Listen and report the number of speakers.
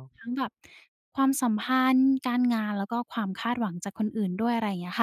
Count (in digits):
1